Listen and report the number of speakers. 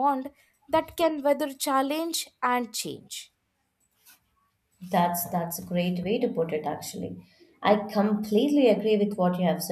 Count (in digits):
2